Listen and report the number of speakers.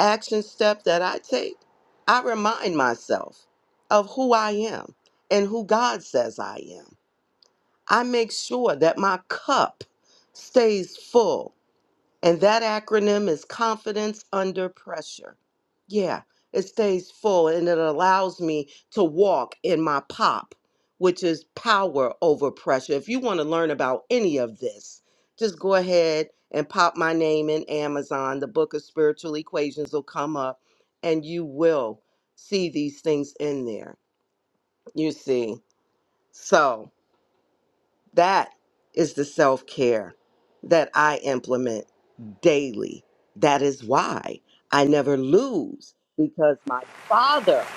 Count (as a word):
one